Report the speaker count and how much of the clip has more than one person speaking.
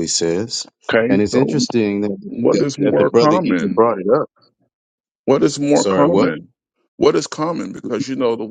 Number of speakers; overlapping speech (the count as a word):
two, about 31%